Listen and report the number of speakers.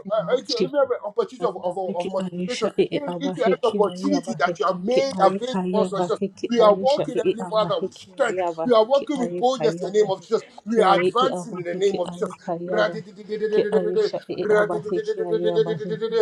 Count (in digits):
2